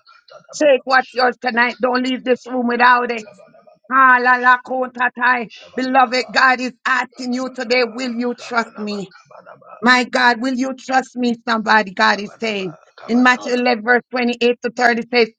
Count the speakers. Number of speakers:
2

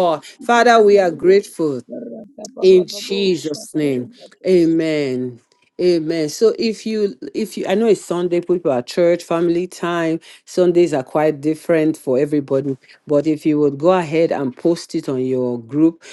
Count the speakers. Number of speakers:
2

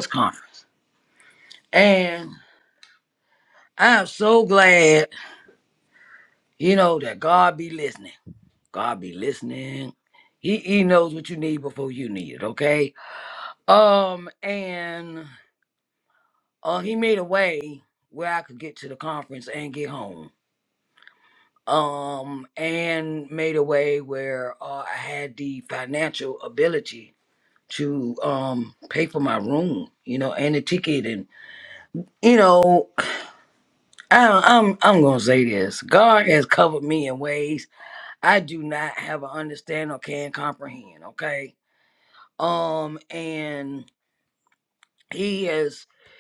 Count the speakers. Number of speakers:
1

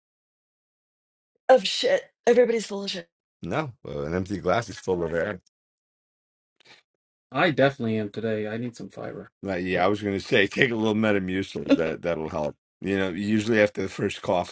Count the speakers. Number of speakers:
3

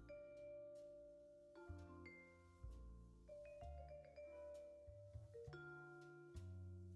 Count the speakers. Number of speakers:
0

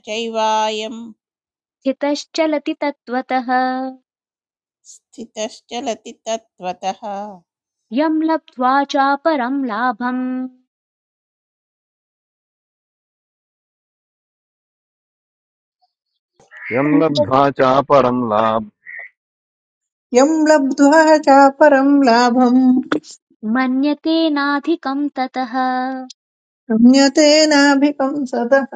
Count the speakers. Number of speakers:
4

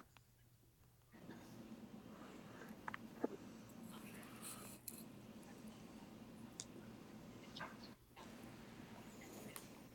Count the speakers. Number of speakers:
0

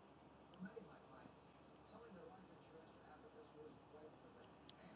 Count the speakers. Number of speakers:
0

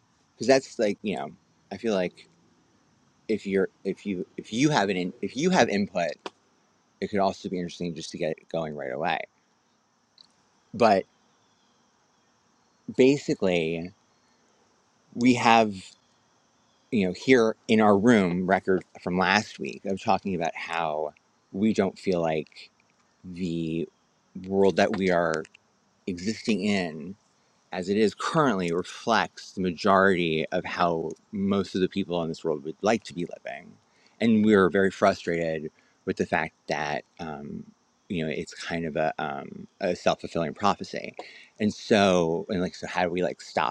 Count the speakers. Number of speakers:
1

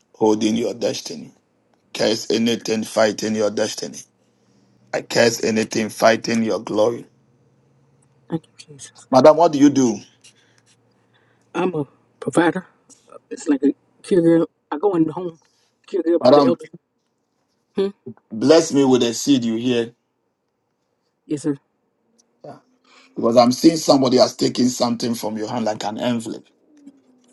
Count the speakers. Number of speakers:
2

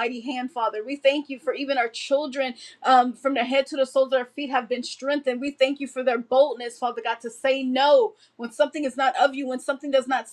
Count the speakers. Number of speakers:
1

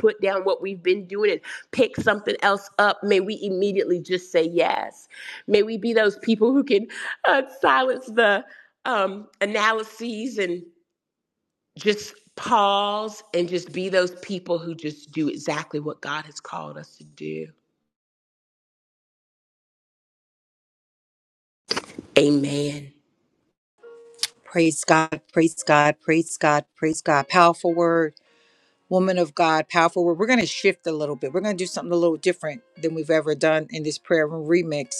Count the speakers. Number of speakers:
2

